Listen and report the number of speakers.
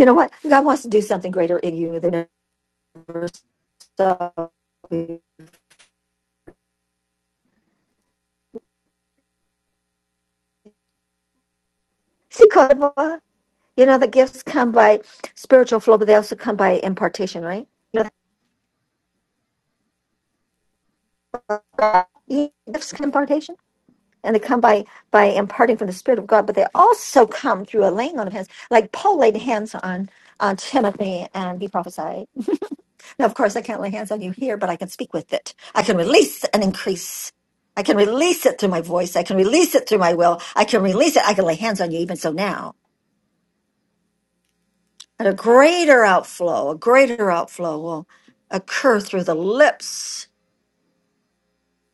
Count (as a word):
one